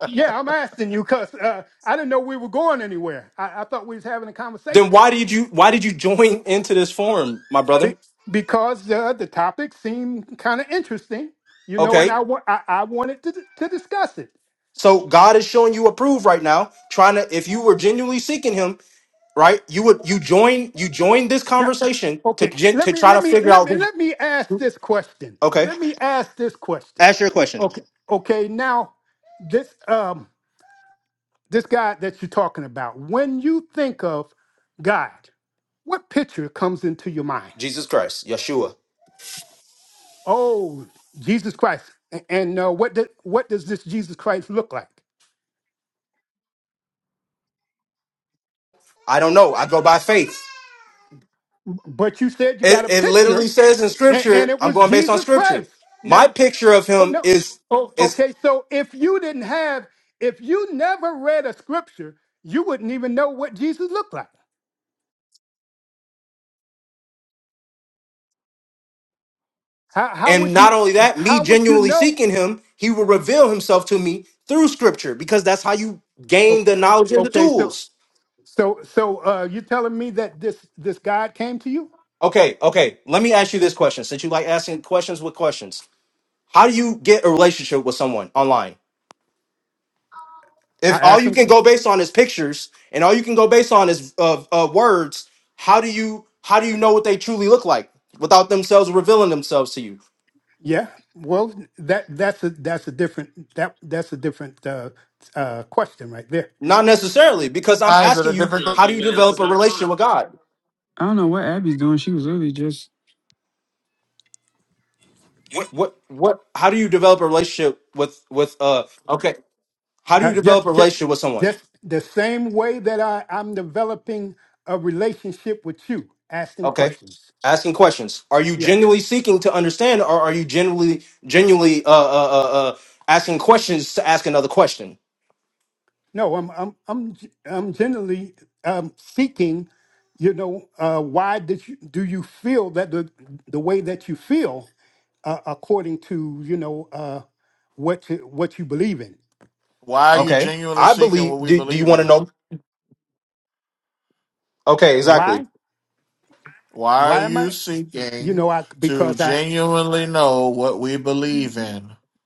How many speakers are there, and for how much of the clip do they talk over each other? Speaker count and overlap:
4, about 9%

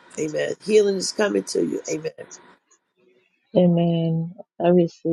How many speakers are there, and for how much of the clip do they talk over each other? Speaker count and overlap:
2, no overlap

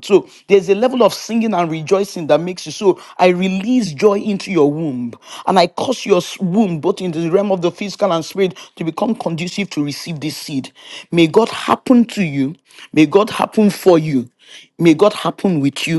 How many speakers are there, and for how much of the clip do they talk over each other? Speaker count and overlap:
1, no overlap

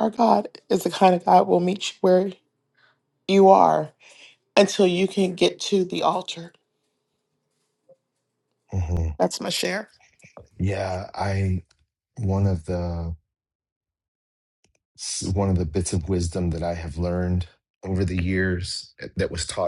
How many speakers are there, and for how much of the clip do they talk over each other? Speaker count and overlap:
2, no overlap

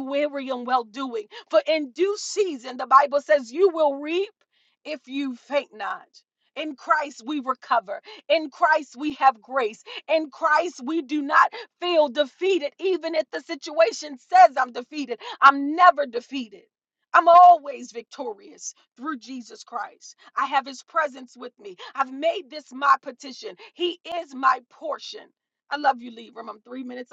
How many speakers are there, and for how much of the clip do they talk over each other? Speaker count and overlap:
1, no overlap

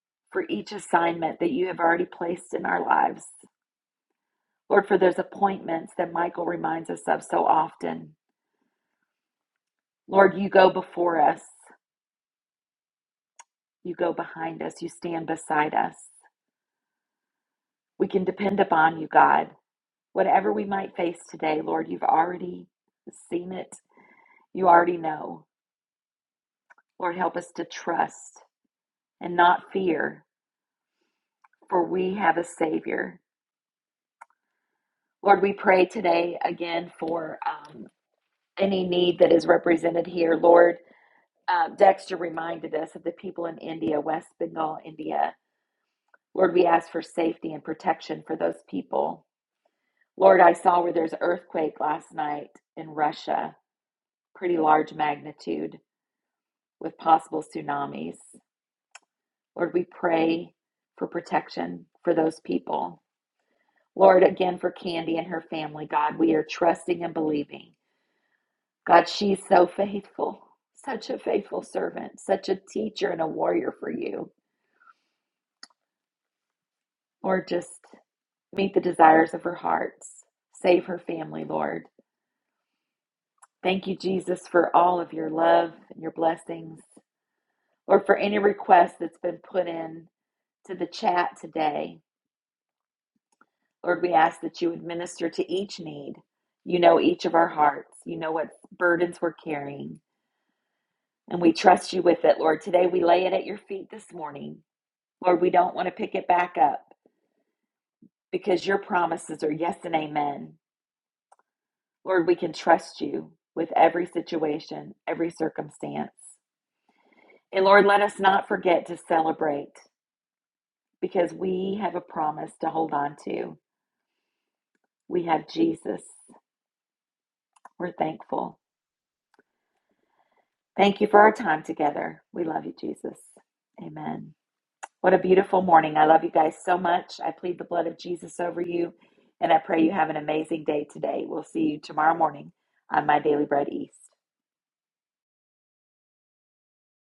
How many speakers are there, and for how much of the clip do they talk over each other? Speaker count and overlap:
1, no overlap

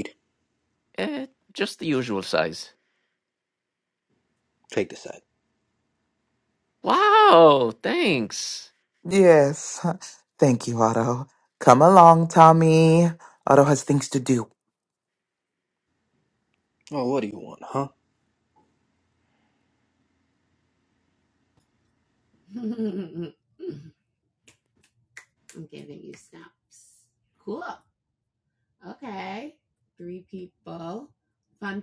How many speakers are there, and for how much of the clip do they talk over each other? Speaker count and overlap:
4, no overlap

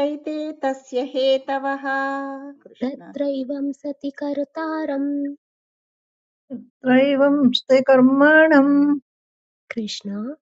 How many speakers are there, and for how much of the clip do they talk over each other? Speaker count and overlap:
3, about 3%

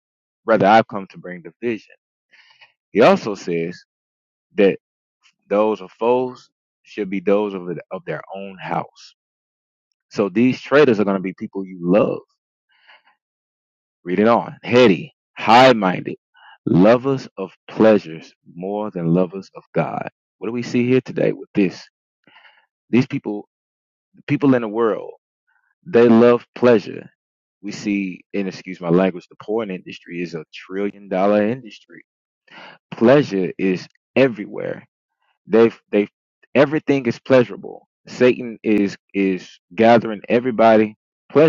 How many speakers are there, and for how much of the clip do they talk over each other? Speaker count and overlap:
1, no overlap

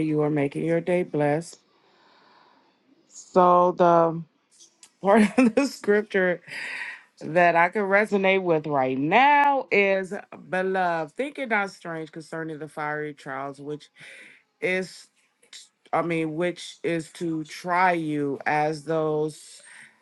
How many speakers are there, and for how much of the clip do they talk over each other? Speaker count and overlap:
1, no overlap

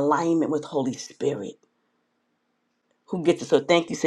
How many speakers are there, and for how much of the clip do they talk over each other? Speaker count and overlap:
1, no overlap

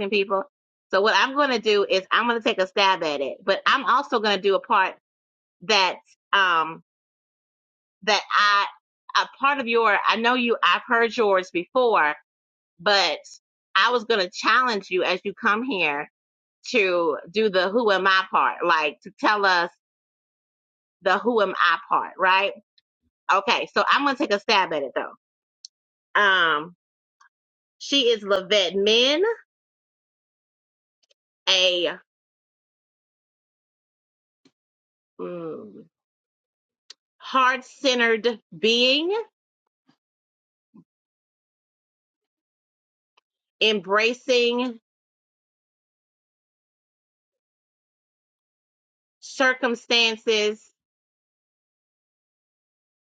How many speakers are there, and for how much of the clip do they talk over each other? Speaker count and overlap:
1, no overlap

